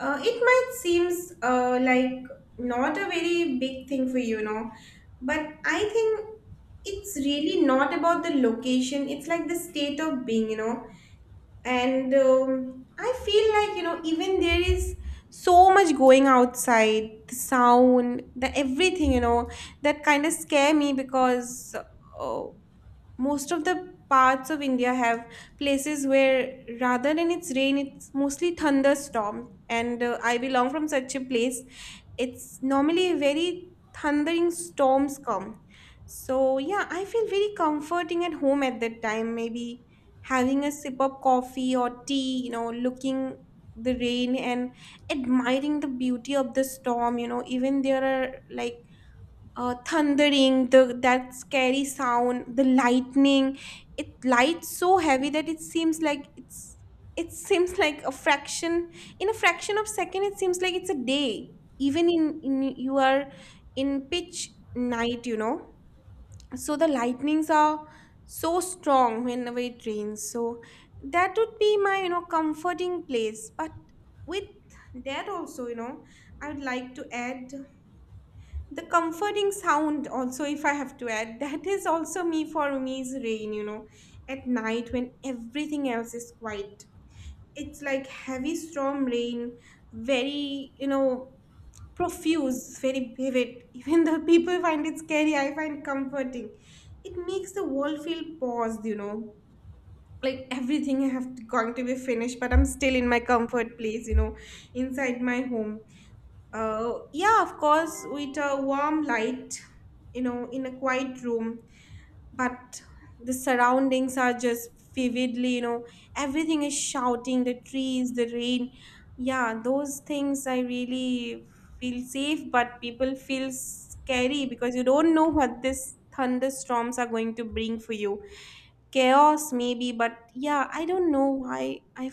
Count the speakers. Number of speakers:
1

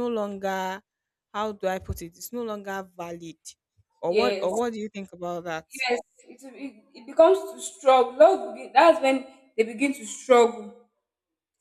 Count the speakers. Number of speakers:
2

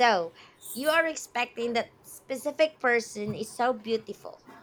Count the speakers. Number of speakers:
1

